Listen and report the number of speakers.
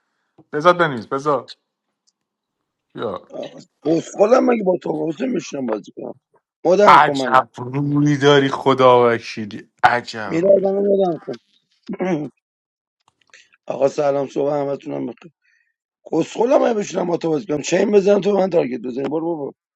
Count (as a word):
two